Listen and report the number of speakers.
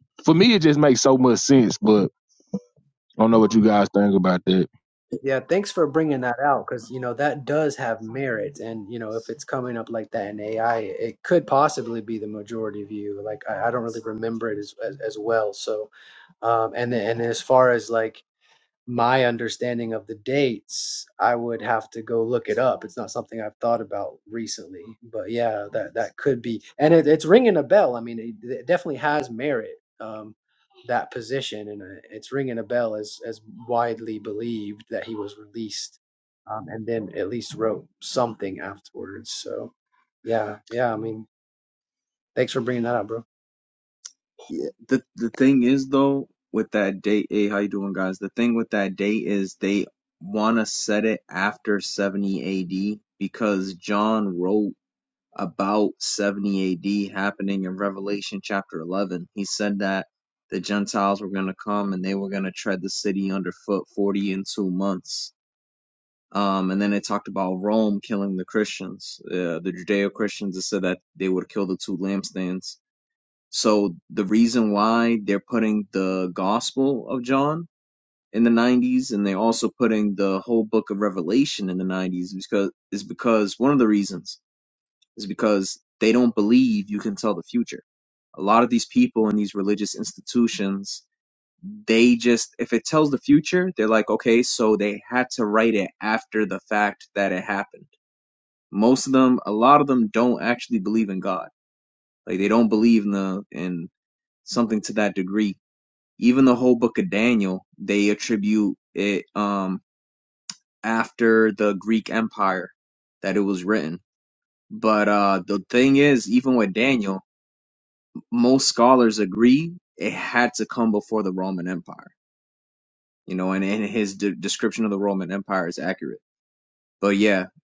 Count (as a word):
three